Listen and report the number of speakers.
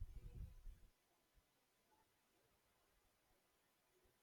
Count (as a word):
zero